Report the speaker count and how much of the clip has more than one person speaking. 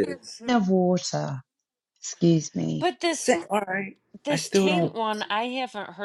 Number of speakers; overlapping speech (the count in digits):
3, about 13%